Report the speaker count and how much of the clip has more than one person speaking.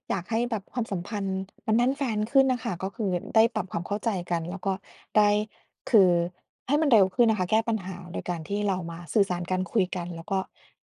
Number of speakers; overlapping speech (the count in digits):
1, no overlap